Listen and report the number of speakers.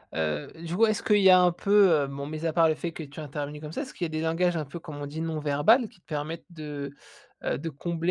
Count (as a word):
one